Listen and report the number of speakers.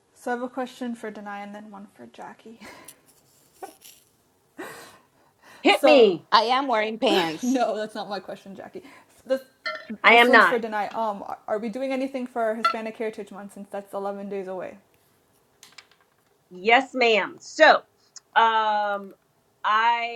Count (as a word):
three